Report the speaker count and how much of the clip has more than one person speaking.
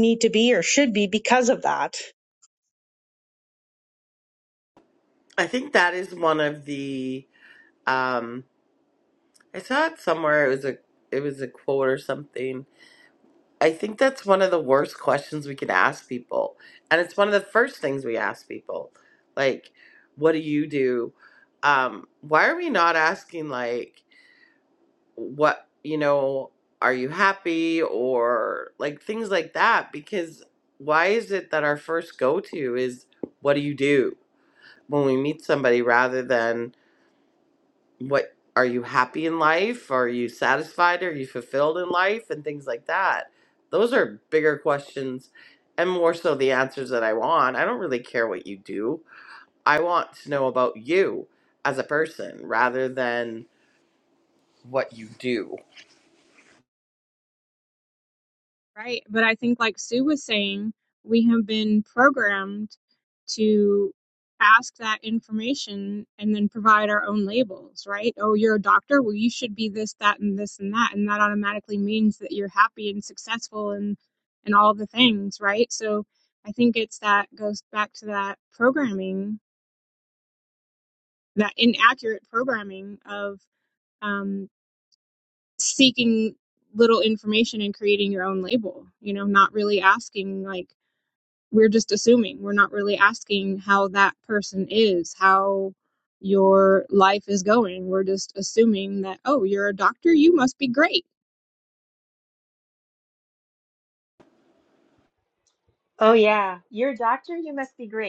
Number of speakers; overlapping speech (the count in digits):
4, no overlap